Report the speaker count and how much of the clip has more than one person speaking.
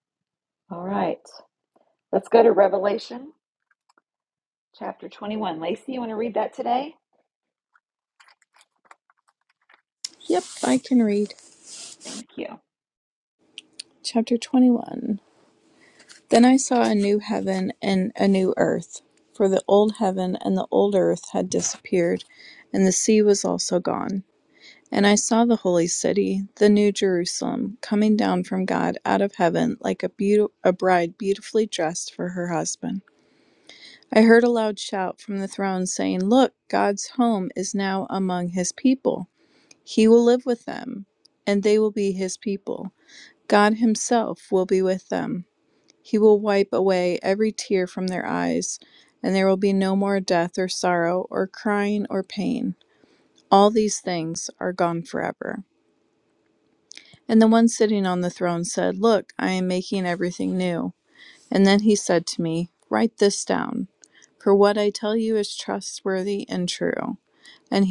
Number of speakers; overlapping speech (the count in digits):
2, no overlap